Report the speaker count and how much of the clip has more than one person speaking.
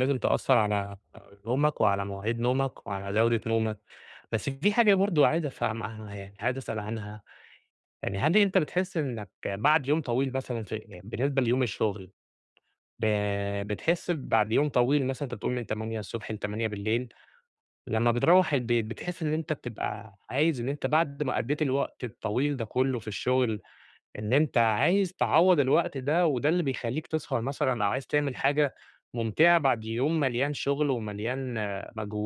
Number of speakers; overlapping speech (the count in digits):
1, no overlap